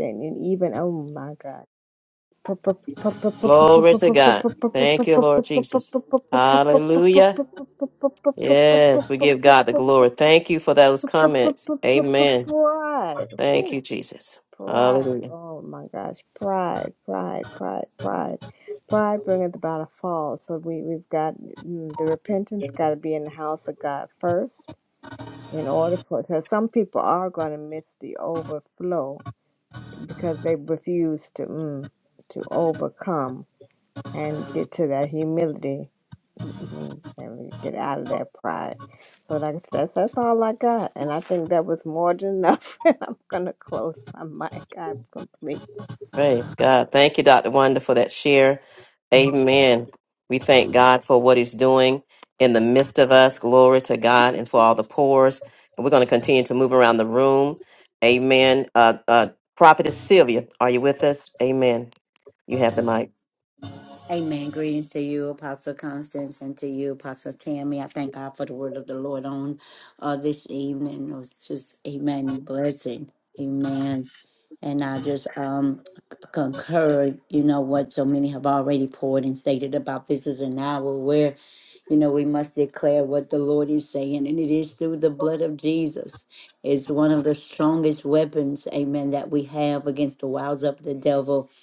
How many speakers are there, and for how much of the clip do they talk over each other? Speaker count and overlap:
3, about 1%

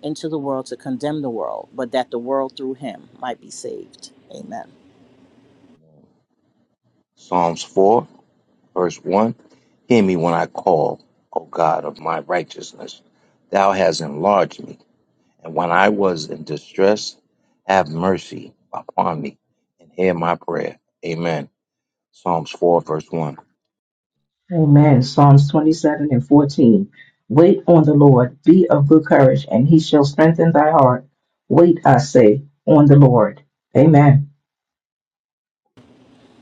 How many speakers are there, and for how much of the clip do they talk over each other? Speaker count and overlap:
3, no overlap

